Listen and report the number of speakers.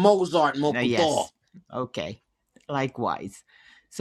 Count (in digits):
2